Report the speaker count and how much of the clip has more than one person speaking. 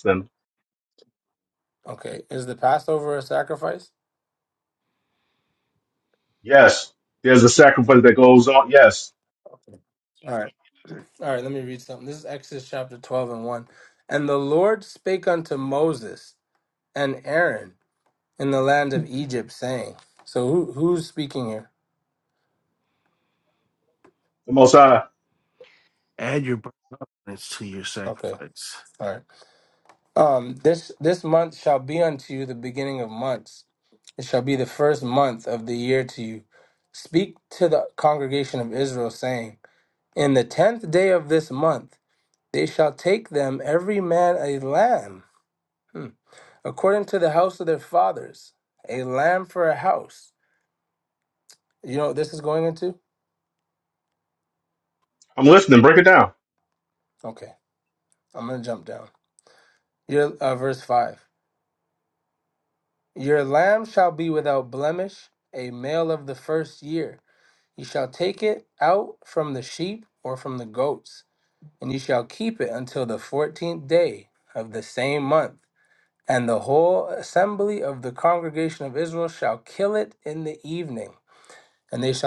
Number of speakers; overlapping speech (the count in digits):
3, under 1%